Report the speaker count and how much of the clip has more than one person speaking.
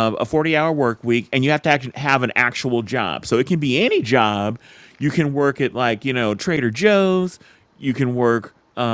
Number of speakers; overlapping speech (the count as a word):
one, no overlap